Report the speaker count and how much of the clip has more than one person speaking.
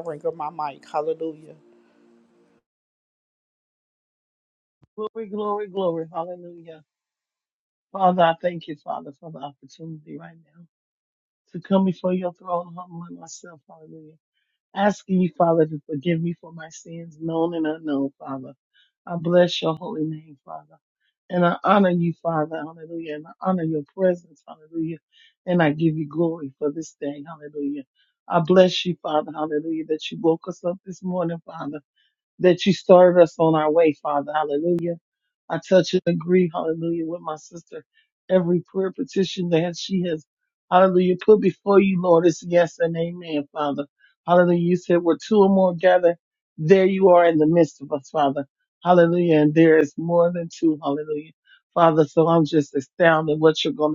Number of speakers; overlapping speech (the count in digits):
2, no overlap